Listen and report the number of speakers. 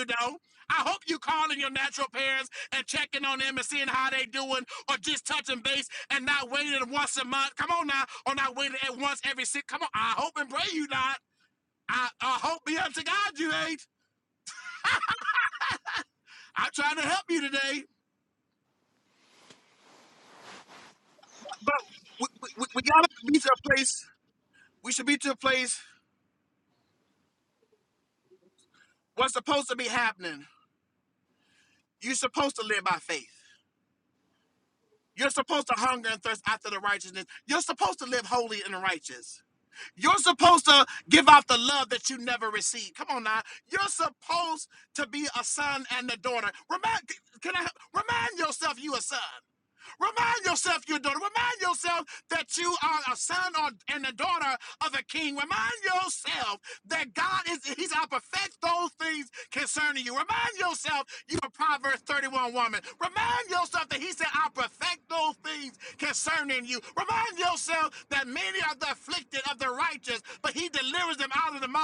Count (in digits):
1